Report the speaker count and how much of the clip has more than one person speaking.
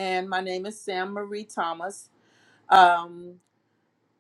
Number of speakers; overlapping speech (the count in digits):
1, no overlap